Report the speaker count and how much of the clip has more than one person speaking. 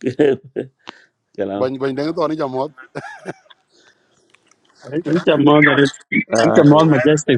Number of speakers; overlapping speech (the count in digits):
3, about 9%